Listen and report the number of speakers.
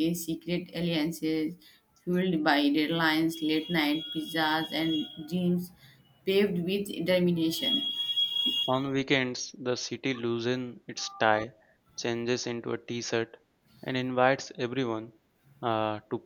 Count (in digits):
2